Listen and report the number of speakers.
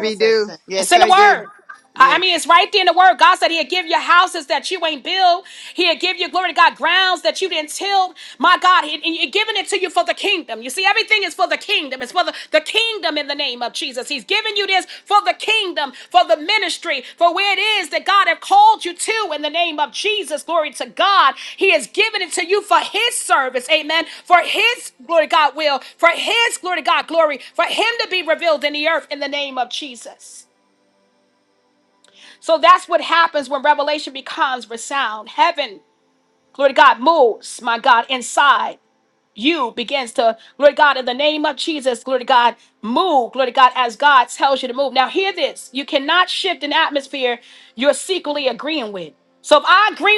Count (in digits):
2